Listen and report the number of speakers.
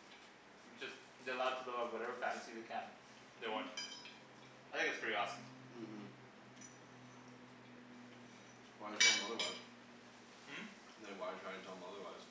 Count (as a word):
two